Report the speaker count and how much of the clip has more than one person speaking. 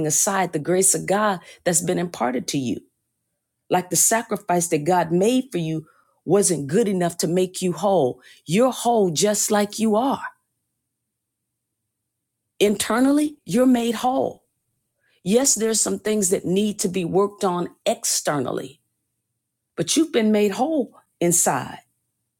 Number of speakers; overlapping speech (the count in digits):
1, no overlap